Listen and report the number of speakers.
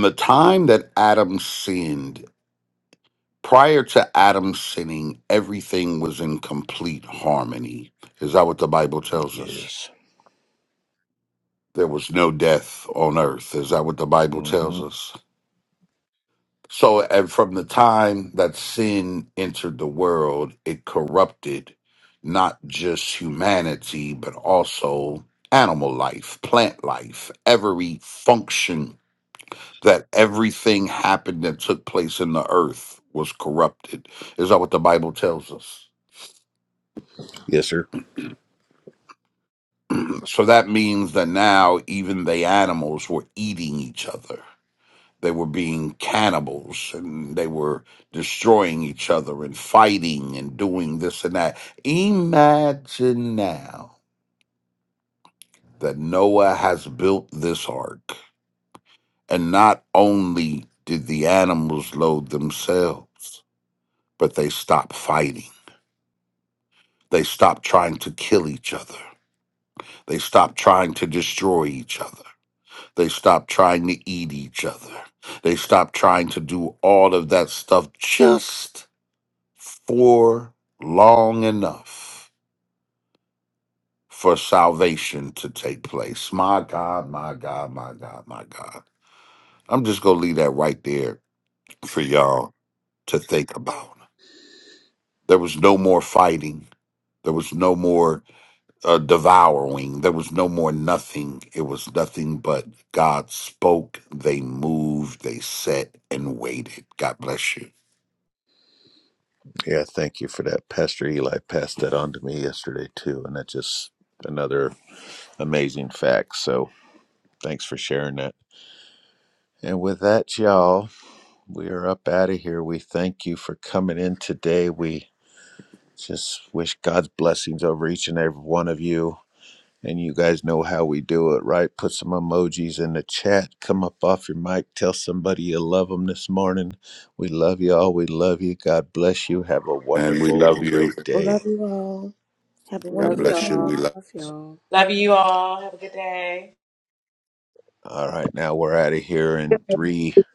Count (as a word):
five